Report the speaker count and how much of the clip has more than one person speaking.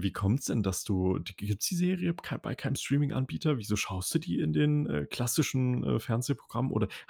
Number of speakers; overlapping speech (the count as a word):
one, no overlap